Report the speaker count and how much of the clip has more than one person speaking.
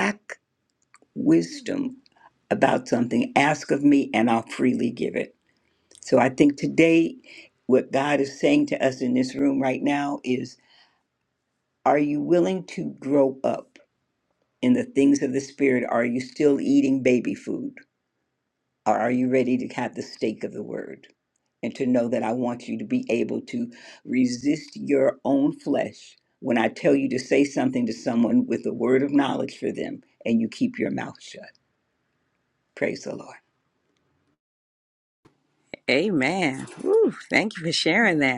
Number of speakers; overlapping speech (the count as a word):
two, no overlap